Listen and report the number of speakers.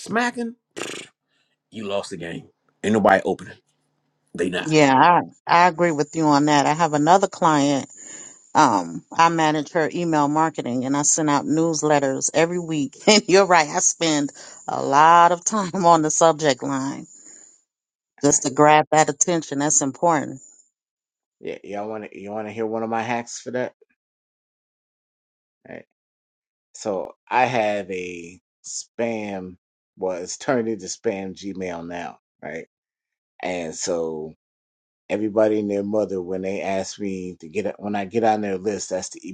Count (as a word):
three